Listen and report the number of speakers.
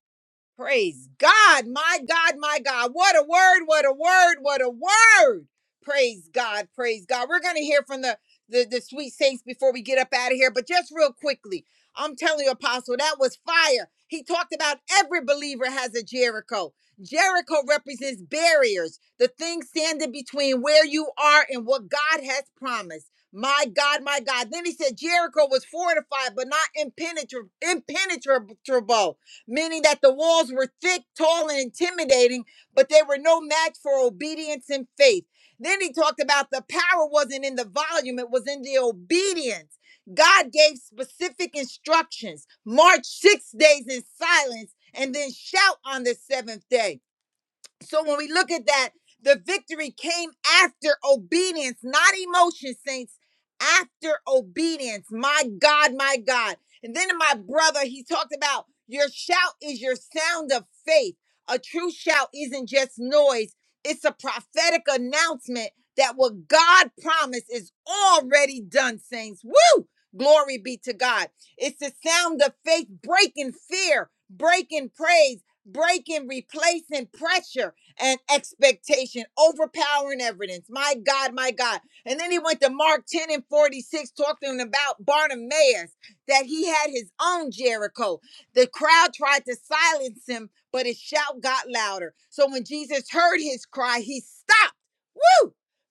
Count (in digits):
1